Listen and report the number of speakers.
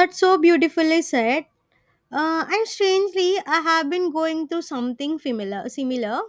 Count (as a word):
one